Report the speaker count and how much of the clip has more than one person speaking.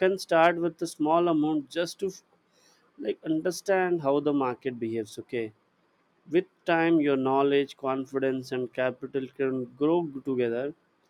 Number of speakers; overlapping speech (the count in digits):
1, no overlap